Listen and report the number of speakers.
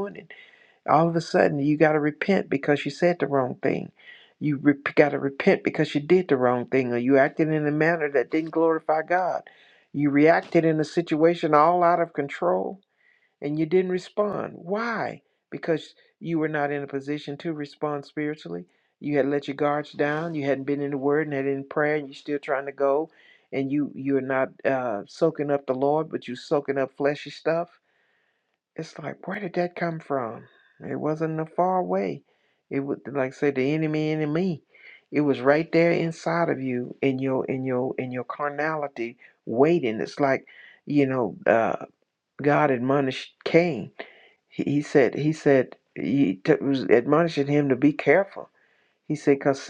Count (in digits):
1